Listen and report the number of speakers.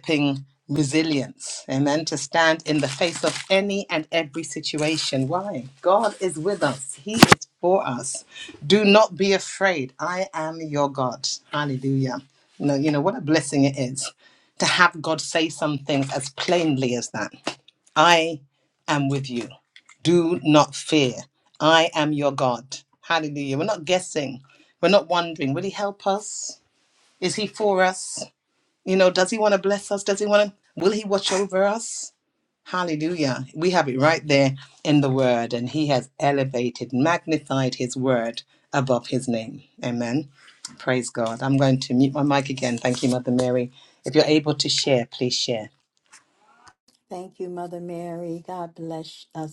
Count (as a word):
two